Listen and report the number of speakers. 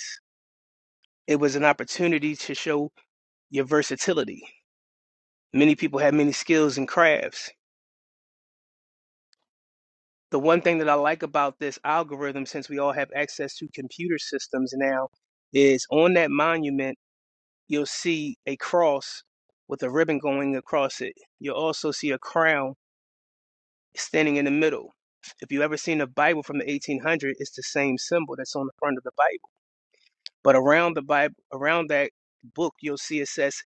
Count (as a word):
one